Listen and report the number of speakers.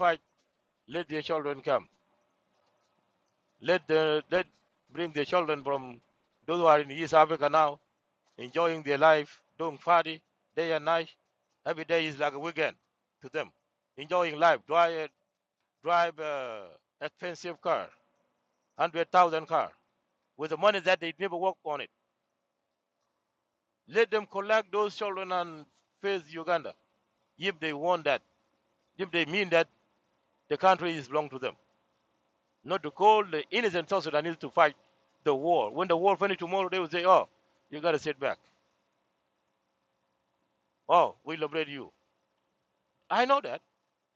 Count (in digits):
1